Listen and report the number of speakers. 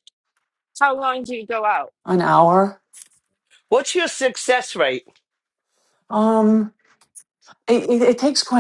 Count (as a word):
three